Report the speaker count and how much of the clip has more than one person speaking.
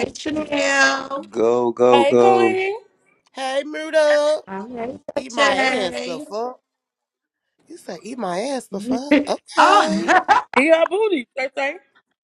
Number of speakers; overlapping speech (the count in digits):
4, about 16%